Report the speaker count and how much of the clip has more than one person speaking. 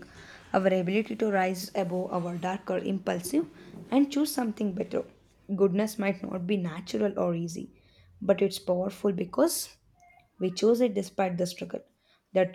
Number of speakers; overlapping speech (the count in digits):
1, no overlap